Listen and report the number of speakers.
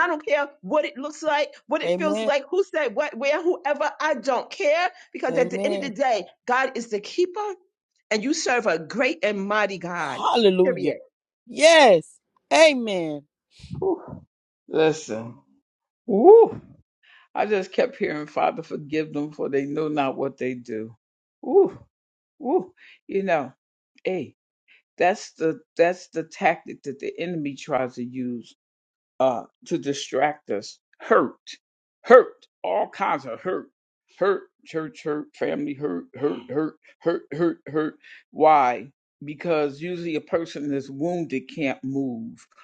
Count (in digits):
3